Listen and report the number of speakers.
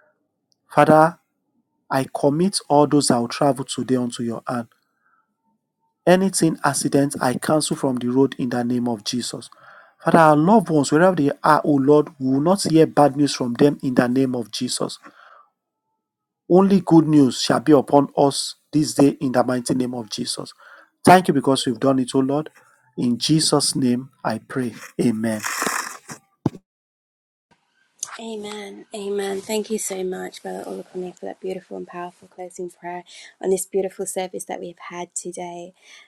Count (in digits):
2